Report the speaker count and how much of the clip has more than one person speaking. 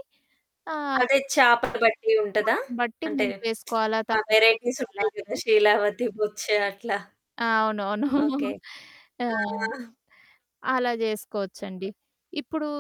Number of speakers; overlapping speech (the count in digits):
2, about 11%